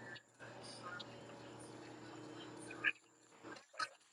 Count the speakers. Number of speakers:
0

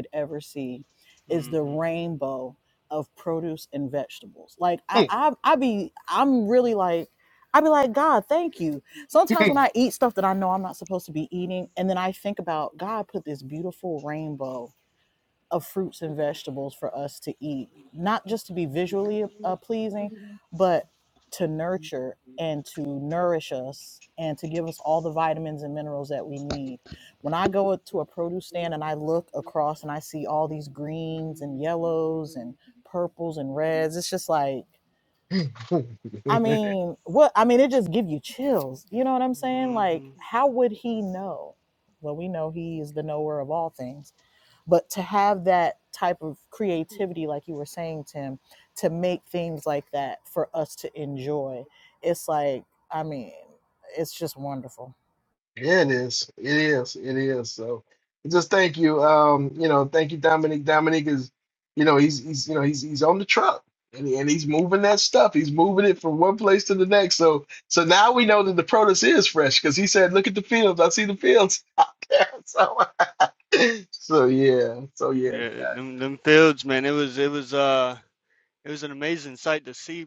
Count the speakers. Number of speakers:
3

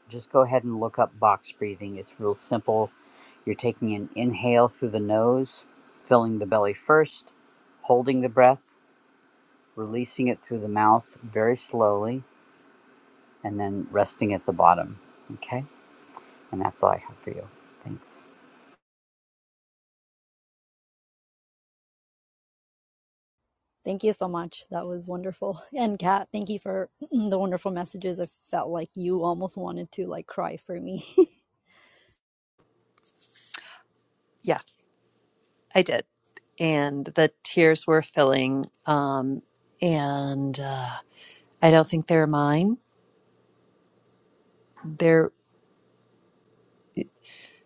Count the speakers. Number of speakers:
3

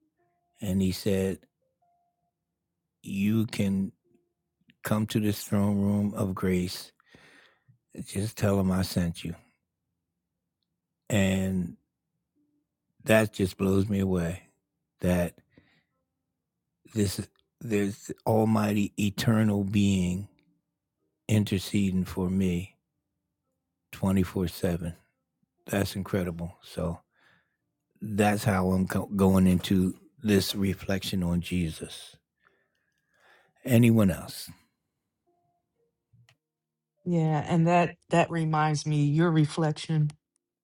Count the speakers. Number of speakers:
2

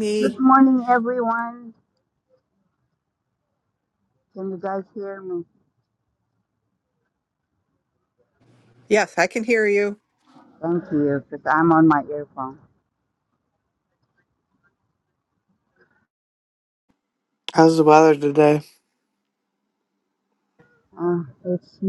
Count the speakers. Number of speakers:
3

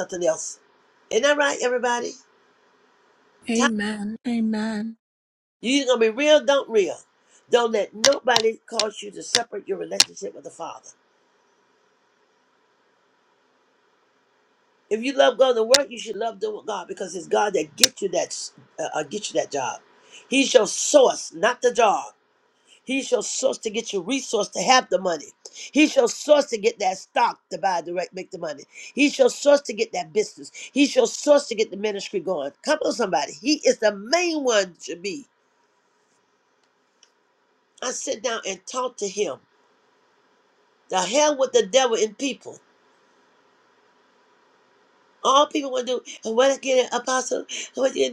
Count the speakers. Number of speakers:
2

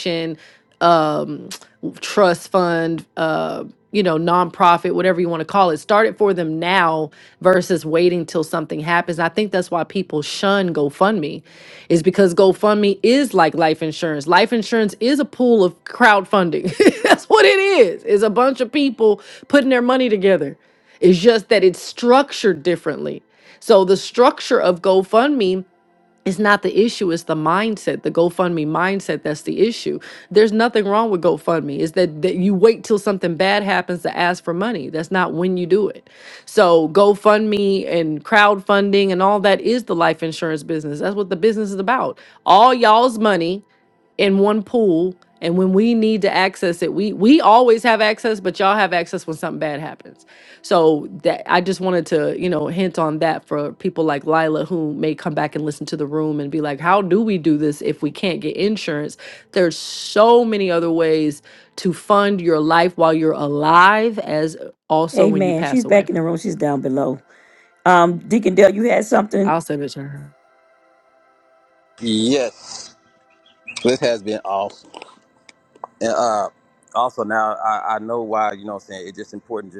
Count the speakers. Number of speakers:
3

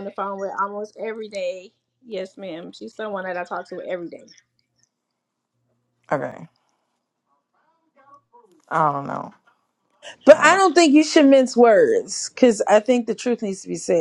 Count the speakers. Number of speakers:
3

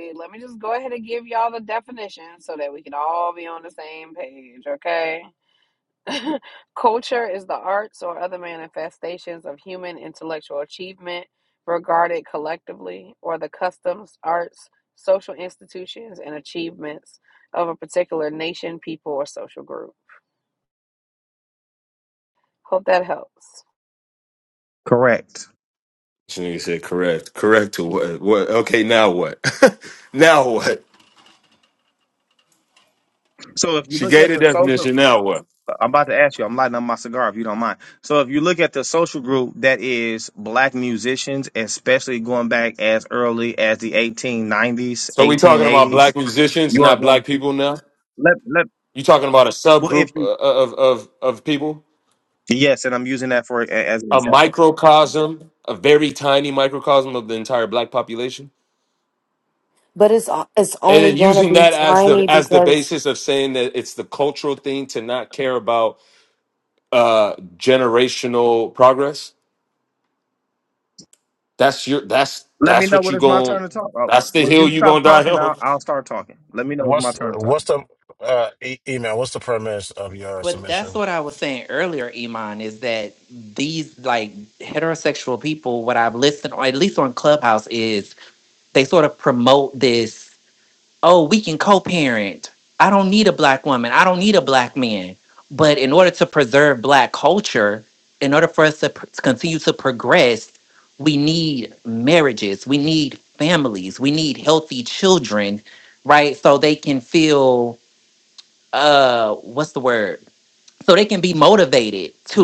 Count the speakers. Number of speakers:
6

